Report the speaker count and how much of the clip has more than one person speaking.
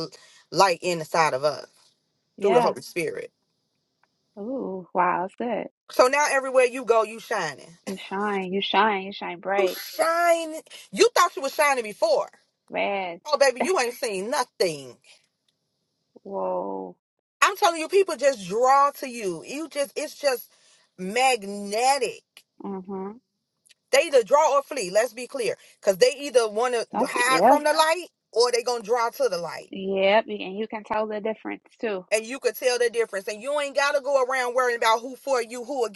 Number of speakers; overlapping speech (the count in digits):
2, about 3%